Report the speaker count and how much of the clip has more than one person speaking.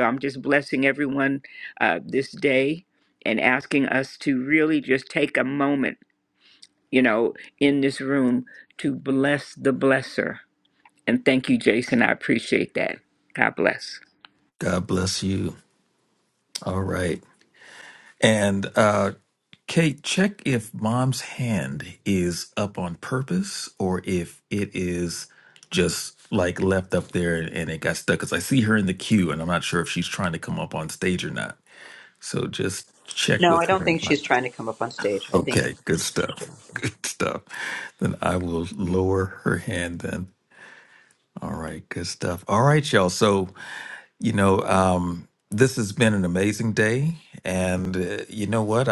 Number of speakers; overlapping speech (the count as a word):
three, about 4%